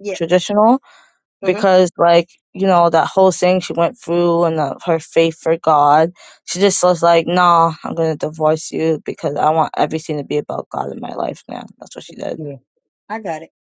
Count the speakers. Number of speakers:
2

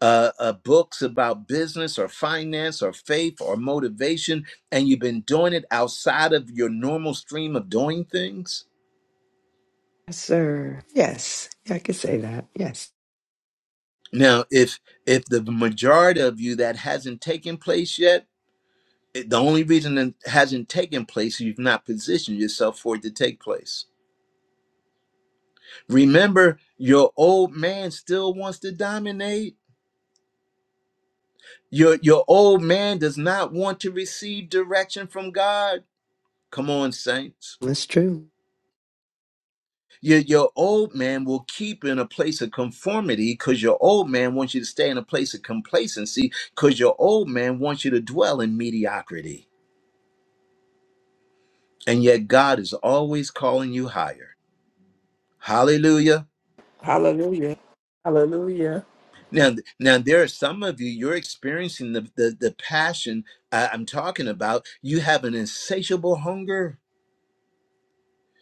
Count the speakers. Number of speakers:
3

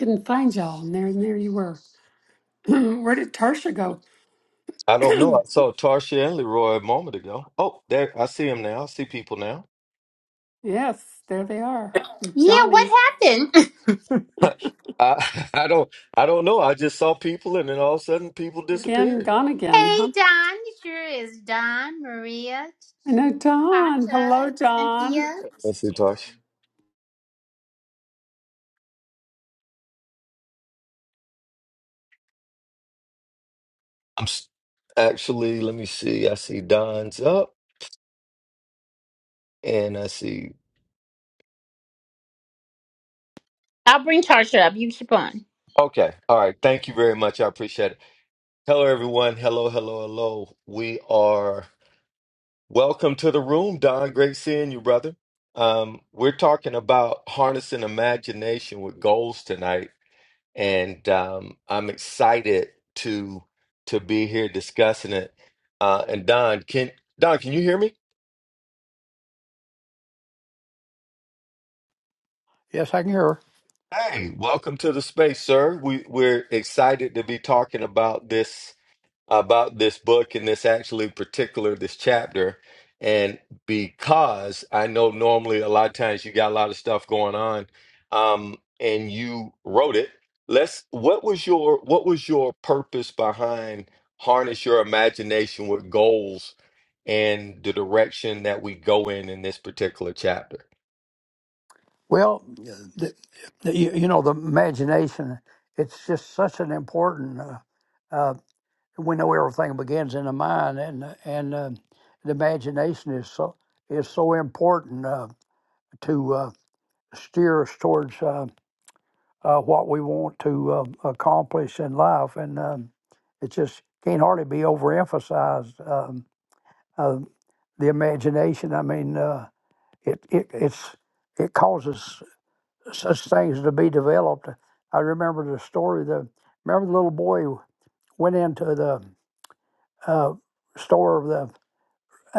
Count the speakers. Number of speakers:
4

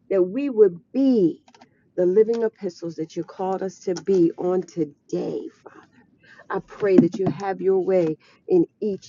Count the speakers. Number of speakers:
1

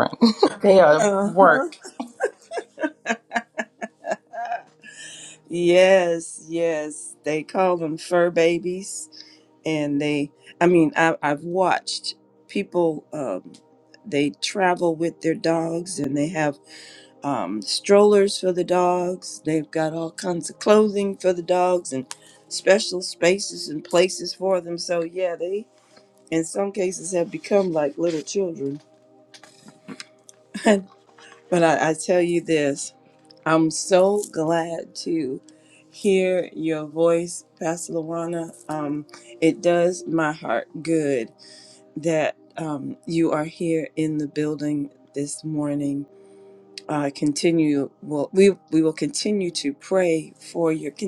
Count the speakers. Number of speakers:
2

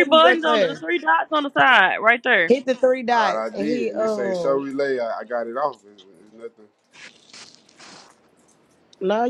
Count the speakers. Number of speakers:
3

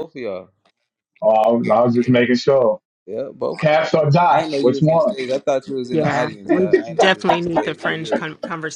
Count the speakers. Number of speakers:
3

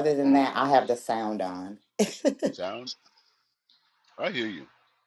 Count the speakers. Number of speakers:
2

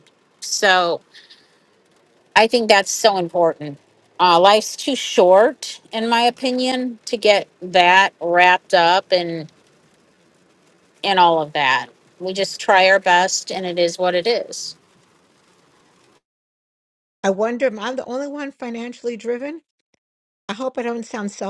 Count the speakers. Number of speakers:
2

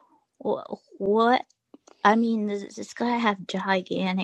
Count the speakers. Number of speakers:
1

